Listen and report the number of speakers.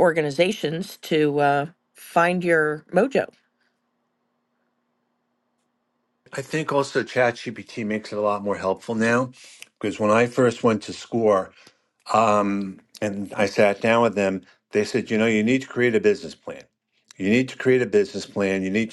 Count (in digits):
2